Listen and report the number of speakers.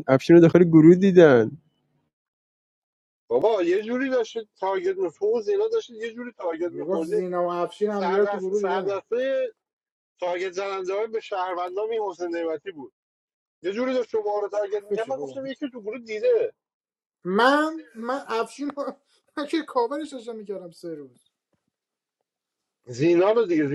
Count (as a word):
three